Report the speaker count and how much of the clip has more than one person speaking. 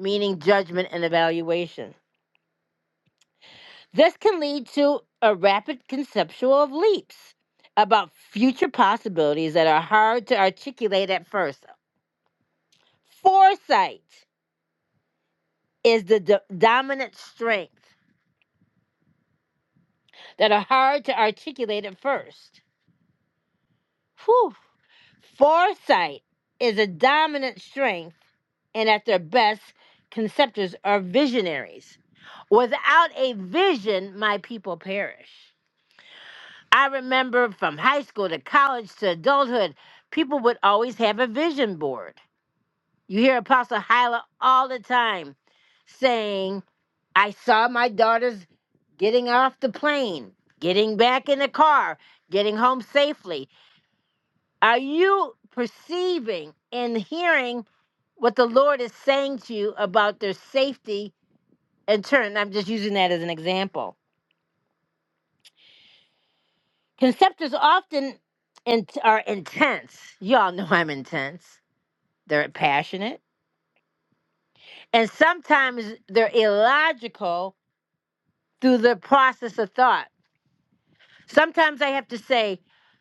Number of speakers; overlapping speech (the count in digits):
1, no overlap